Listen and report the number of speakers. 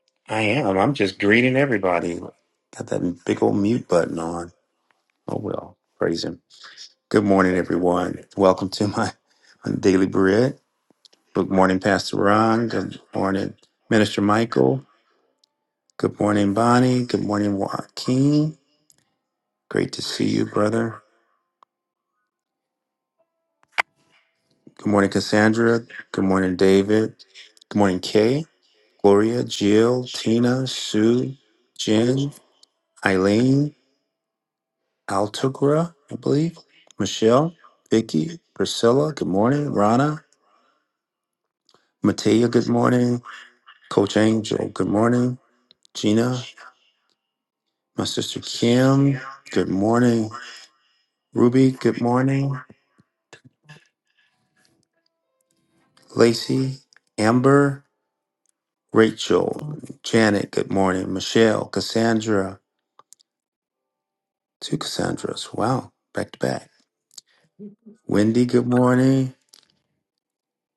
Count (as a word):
one